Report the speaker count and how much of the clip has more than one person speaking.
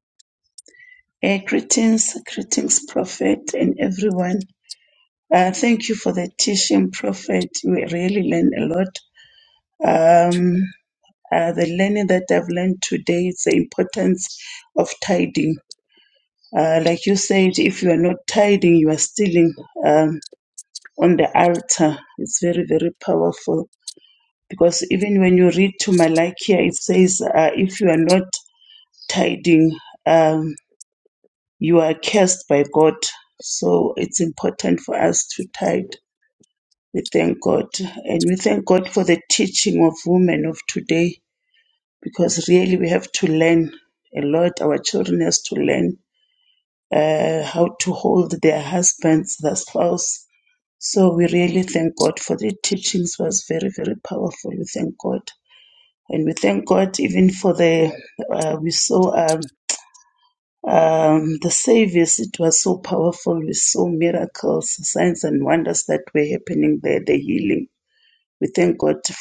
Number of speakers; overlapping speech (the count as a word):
one, no overlap